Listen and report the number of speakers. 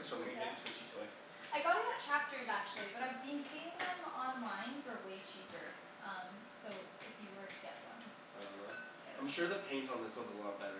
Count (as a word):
two